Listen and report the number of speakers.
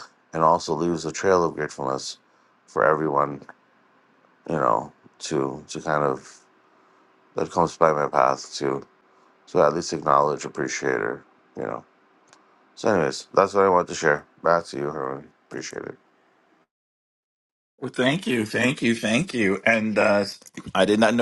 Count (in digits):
2